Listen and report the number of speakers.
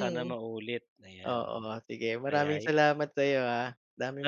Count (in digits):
2